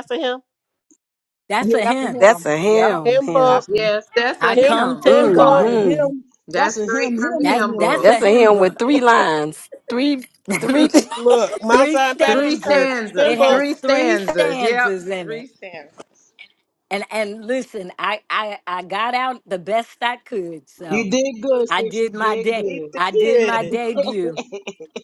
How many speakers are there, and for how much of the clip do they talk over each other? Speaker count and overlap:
five, about 44%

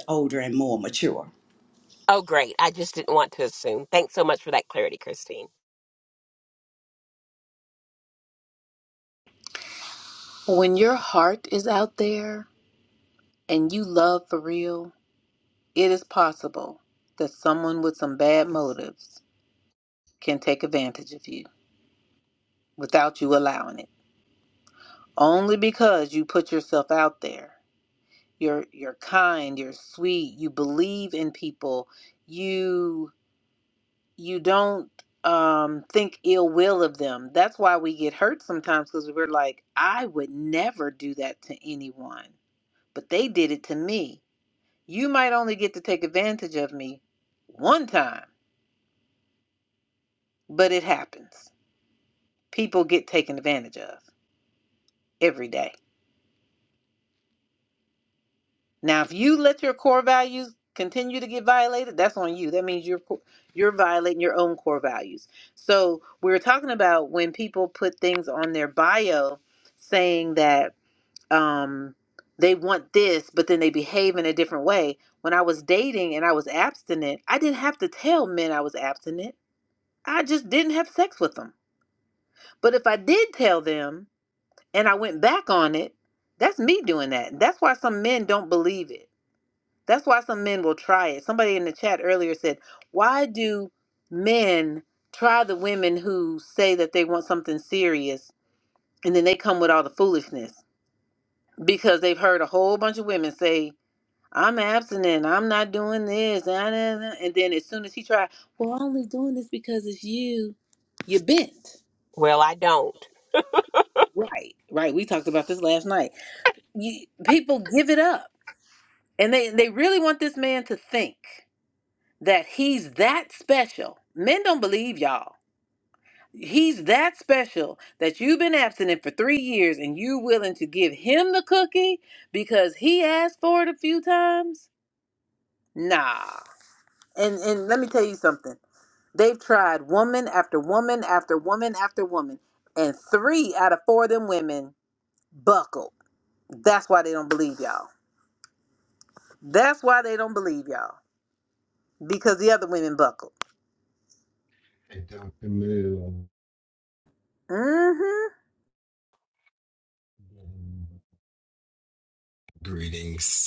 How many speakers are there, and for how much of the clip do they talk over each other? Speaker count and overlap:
four, no overlap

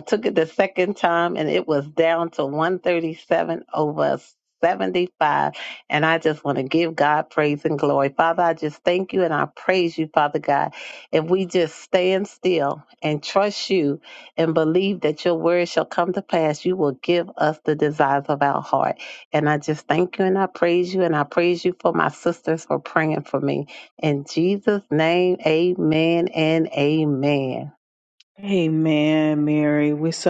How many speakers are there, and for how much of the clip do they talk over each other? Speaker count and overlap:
two, no overlap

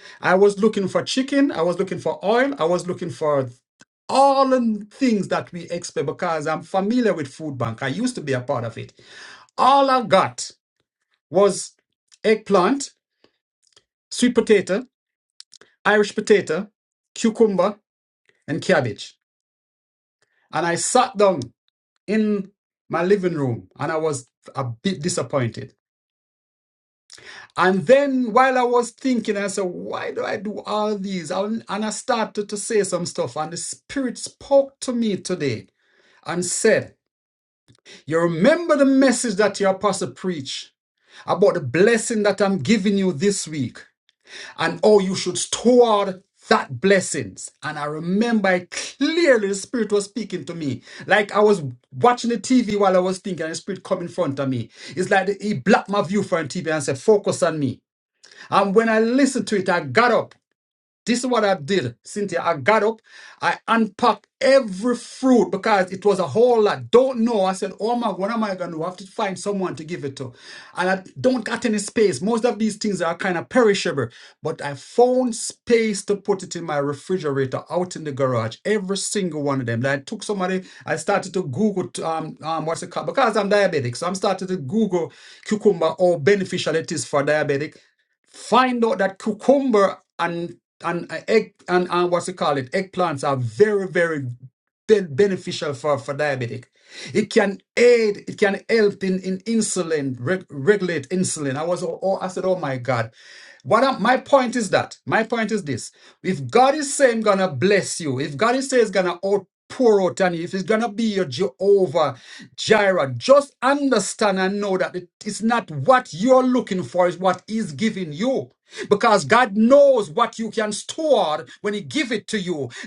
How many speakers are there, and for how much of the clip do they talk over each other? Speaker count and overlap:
one, no overlap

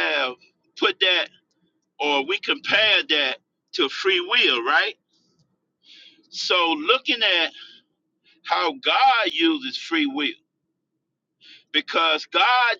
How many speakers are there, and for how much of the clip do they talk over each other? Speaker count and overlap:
one, no overlap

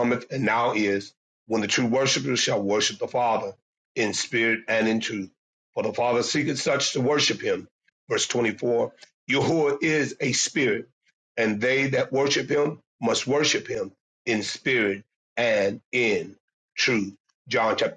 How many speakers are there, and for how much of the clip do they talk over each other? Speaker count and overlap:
one, no overlap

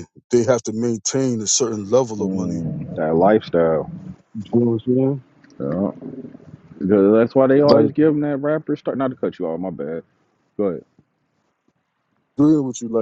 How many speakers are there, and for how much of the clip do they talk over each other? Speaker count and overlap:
two, about 5%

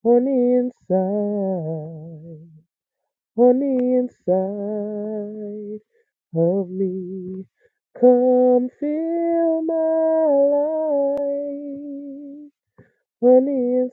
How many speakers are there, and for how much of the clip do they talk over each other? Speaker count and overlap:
one, no overlap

